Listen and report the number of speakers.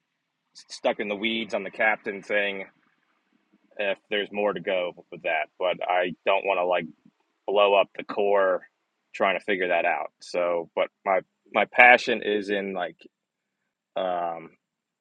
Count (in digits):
1